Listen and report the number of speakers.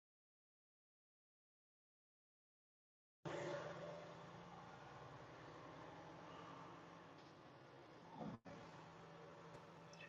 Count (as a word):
zero